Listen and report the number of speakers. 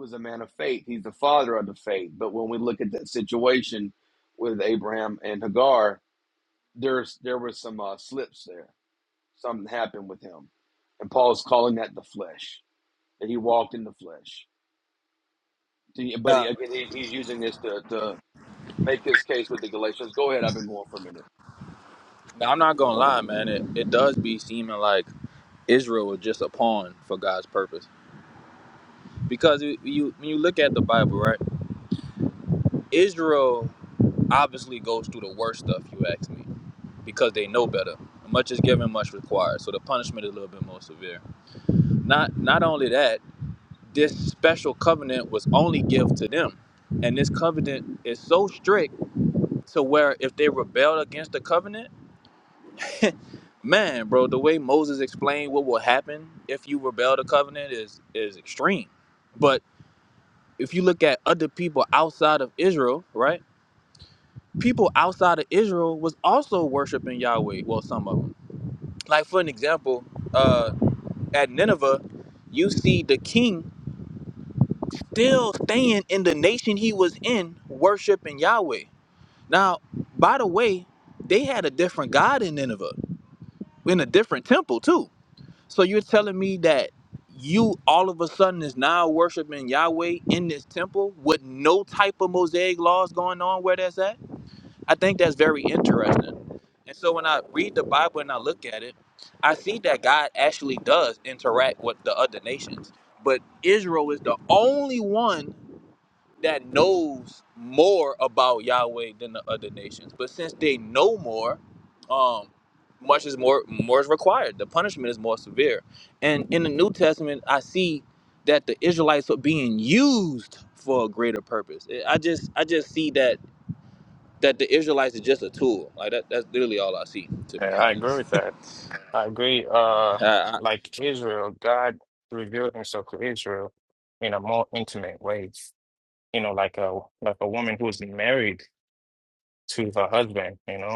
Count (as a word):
three